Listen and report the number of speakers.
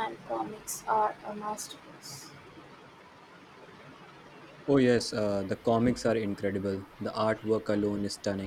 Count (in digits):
2